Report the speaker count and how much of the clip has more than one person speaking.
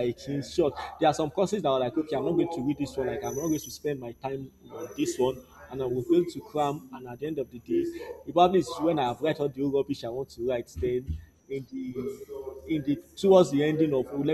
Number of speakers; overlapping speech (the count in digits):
1, no overlap